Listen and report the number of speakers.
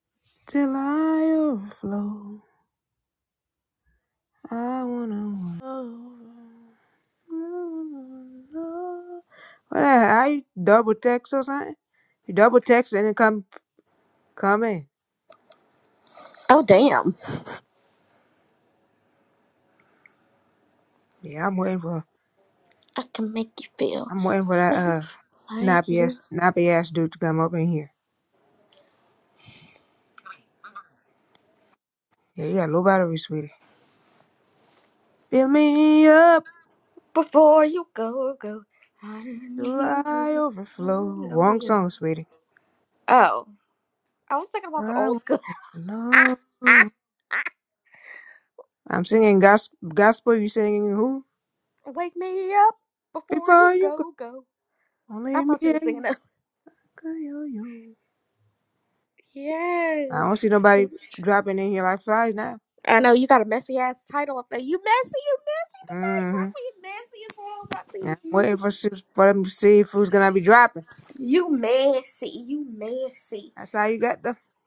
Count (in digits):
2